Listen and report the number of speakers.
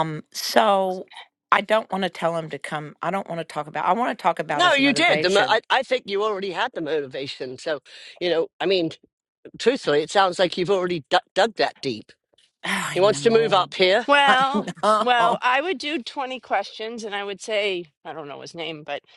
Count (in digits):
3